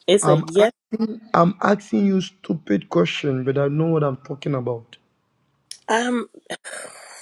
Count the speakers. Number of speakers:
2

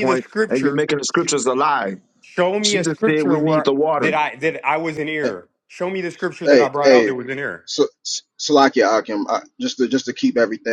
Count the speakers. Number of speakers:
3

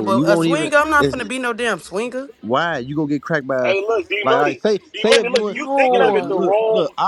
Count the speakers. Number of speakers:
3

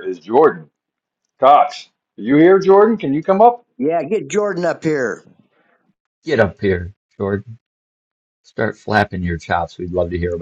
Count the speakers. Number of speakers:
3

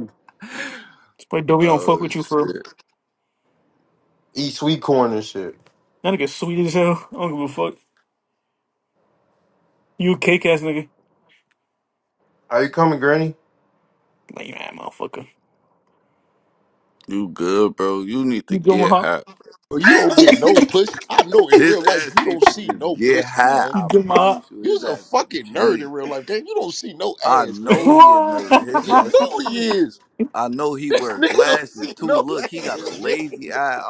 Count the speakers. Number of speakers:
4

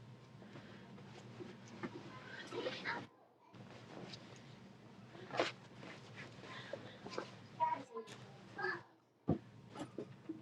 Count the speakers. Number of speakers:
0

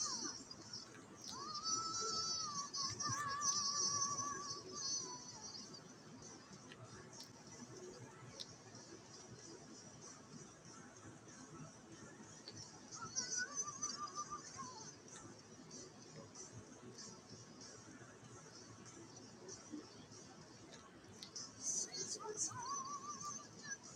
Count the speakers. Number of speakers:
0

